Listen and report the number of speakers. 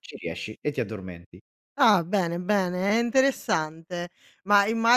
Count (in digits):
2